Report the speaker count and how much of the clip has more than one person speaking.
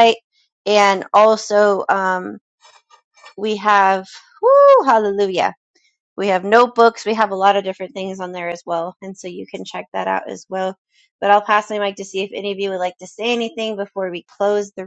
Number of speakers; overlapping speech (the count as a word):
one, no overlap